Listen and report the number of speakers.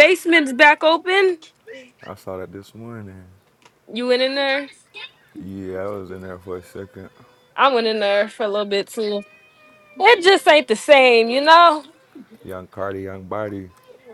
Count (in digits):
2